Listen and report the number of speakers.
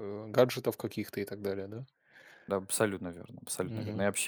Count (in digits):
2